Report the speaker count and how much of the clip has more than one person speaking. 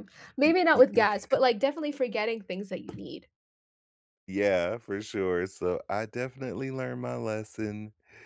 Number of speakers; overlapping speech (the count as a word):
two, about 8%